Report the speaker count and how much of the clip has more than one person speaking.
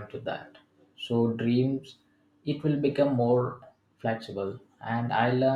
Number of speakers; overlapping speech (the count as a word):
one, no overlap